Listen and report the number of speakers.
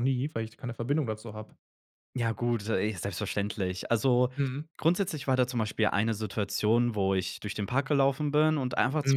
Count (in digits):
2